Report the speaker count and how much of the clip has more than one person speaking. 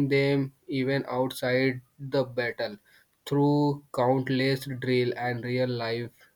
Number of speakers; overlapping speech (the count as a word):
one, no overlap